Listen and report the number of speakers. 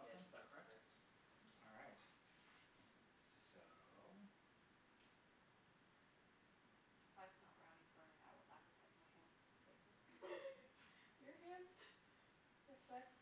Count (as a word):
three